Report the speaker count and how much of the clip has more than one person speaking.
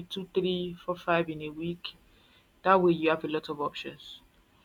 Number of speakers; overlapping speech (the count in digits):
1, no overlap